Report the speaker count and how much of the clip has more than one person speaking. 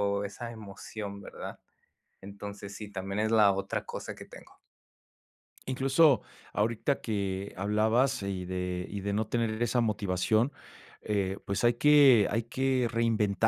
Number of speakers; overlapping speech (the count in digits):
2, no overlap